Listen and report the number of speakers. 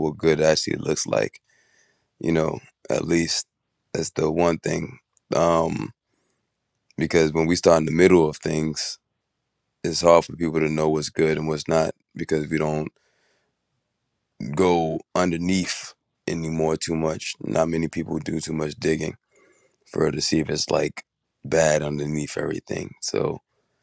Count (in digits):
1